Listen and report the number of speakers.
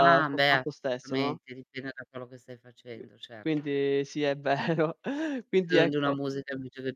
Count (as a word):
two